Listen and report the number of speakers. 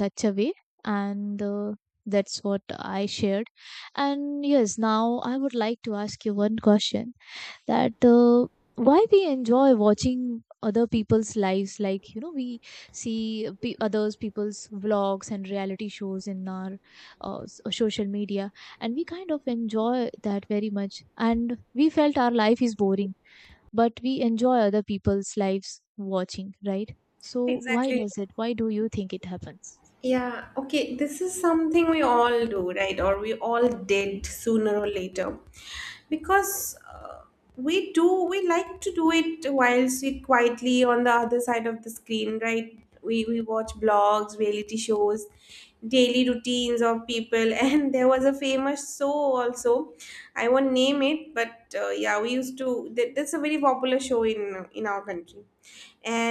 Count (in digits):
2